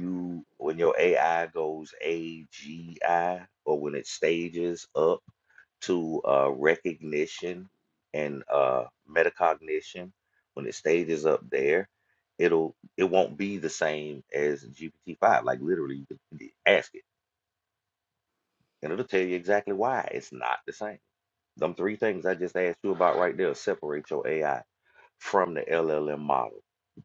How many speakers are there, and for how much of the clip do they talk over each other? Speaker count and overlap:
1, no overlap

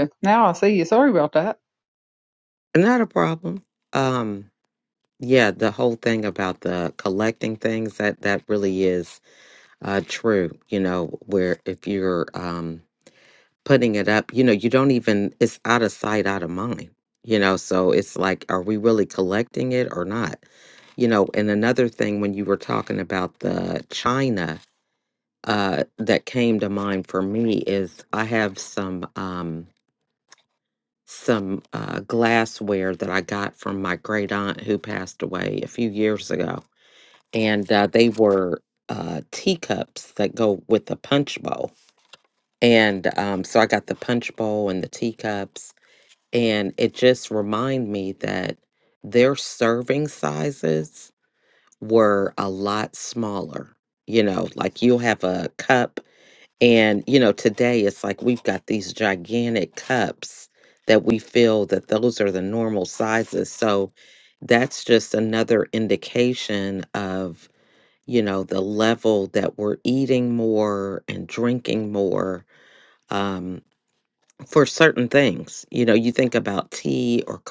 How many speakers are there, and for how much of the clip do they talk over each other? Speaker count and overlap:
2, no overlap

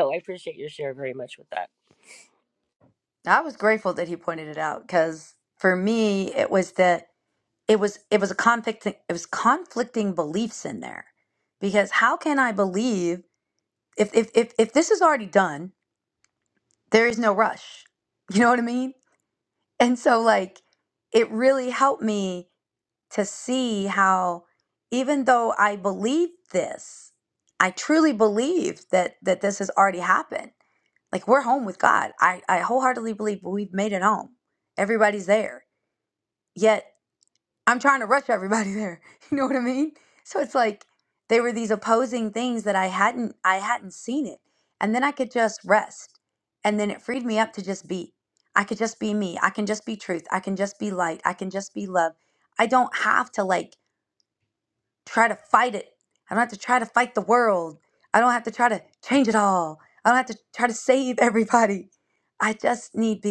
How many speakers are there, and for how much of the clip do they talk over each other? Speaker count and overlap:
2, no overlap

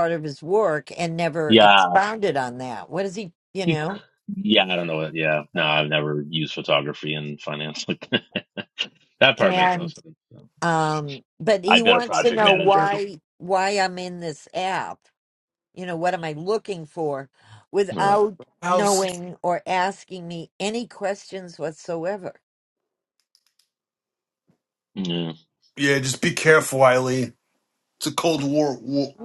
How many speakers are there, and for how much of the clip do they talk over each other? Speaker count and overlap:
3, about 11%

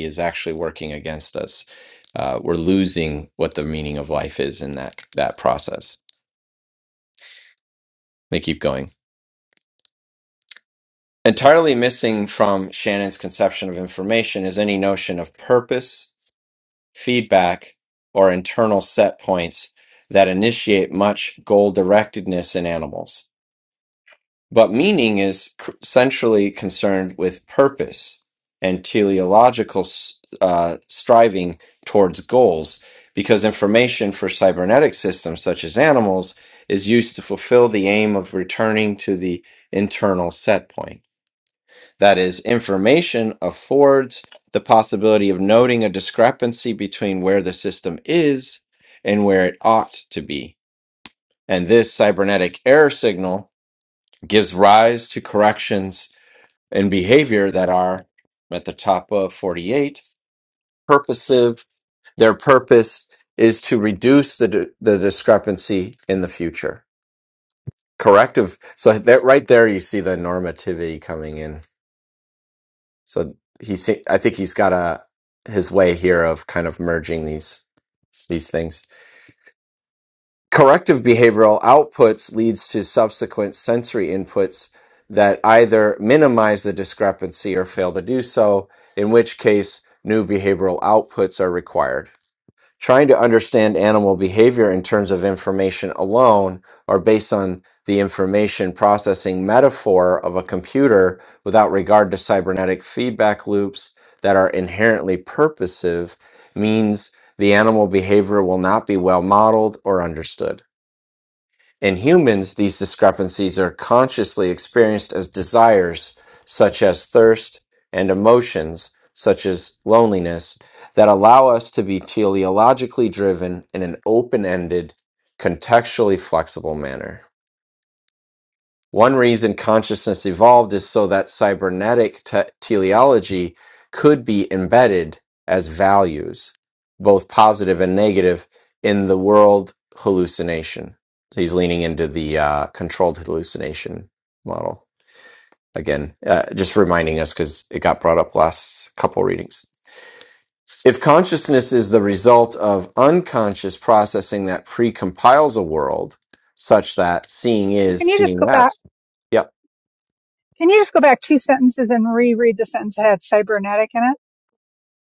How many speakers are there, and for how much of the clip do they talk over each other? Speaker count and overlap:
2, under 1%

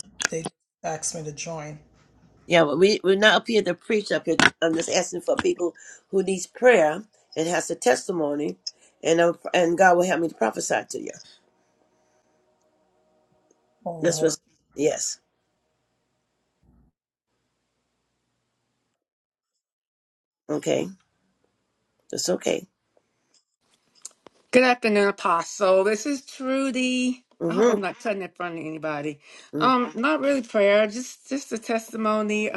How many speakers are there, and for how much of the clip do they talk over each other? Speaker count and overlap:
3, about 2%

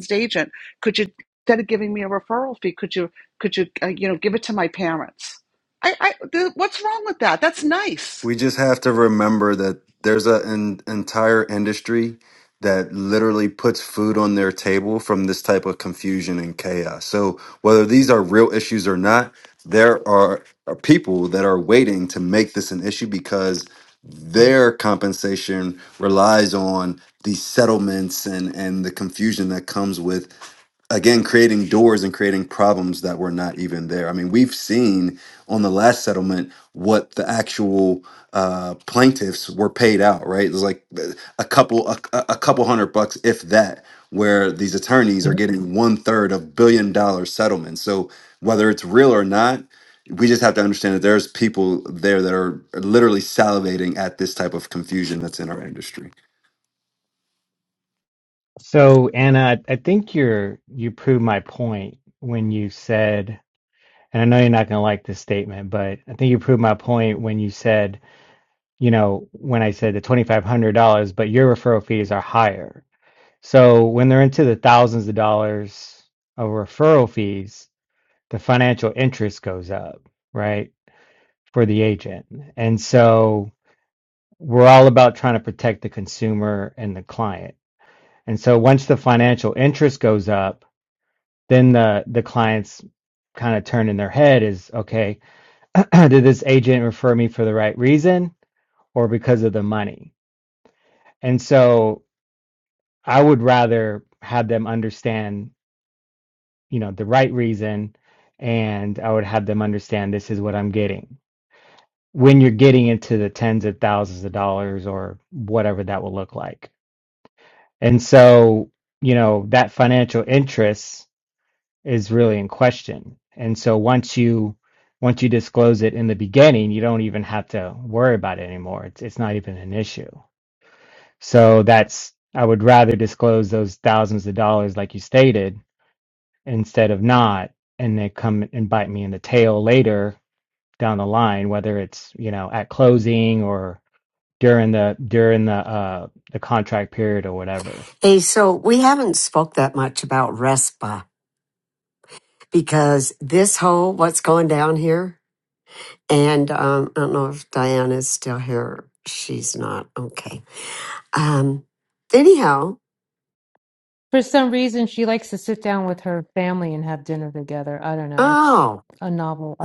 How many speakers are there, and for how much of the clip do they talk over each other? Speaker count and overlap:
5, under 1%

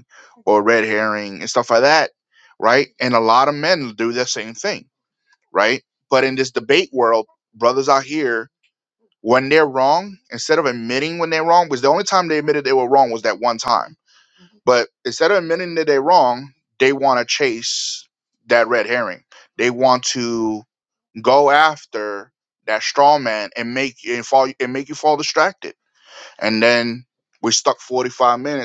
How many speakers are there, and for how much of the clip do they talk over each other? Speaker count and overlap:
1, no overlap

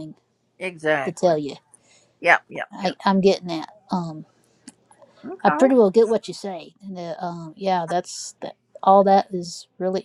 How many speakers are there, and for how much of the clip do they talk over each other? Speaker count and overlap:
2, about 8%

